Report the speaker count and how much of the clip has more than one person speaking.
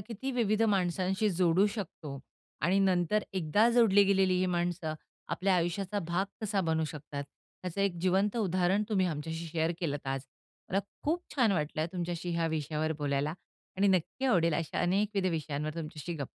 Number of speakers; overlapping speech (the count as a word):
one, no overlap